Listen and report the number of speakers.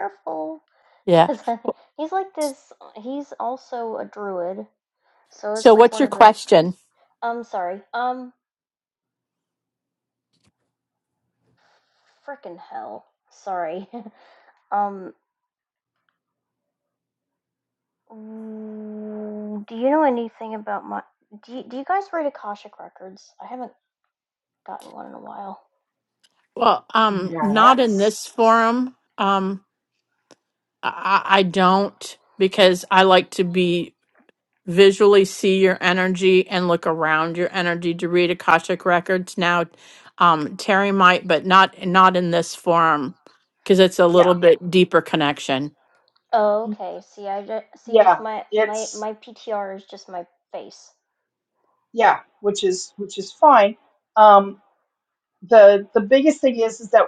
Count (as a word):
three